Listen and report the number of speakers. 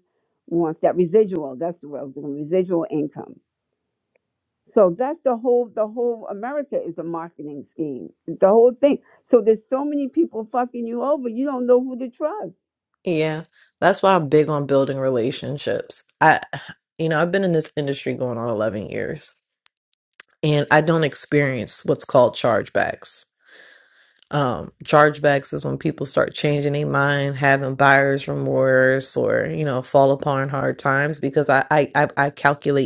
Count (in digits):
2